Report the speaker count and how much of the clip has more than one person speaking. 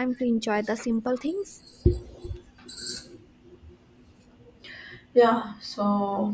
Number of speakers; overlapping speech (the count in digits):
2, no overlap